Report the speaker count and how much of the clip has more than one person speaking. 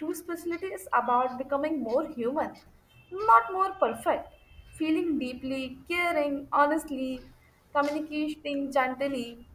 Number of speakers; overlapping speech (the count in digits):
1, no overlap